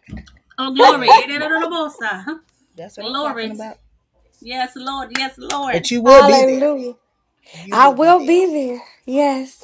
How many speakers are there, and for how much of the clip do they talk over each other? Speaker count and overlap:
3, about 24%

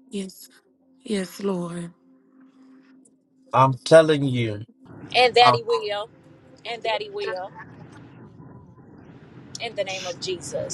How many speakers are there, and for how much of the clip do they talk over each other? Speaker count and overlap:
3, about 2%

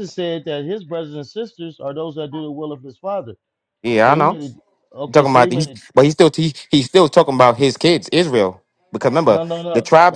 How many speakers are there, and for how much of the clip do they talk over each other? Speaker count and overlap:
2, about 15%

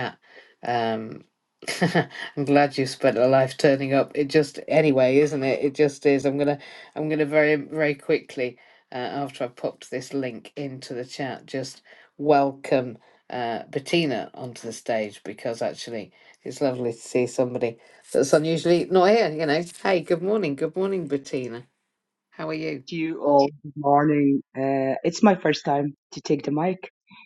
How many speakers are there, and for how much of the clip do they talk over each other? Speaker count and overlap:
2, no overlap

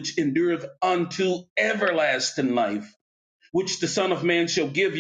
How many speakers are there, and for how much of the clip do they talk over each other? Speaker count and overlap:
1, no overlap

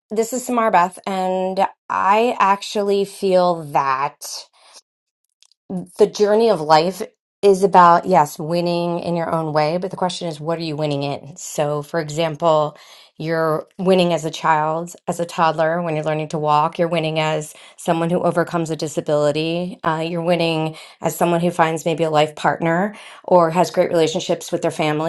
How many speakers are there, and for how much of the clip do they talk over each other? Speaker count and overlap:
1, no overlap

